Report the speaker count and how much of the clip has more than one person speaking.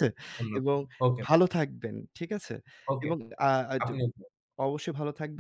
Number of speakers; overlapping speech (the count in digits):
2, about 8%